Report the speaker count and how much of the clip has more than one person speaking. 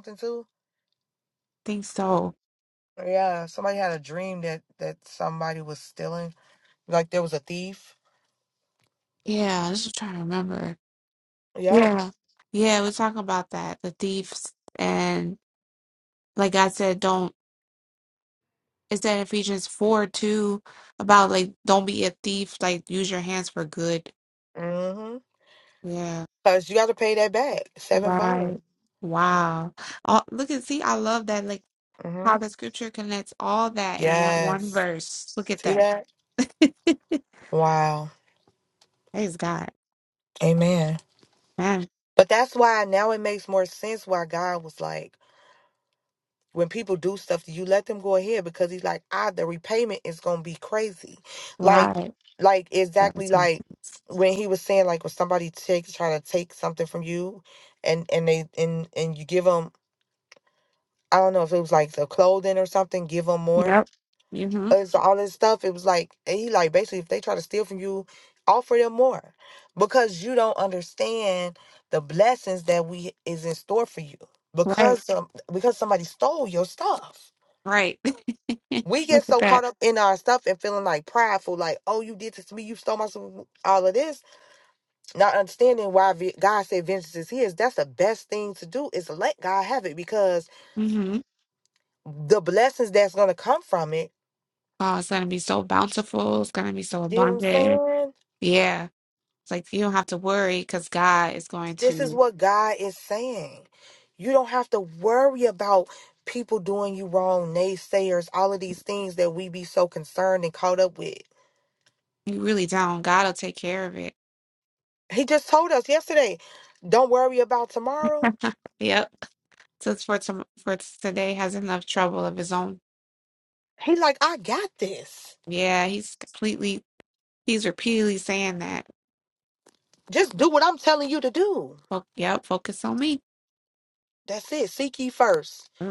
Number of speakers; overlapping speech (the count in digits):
2, about 3%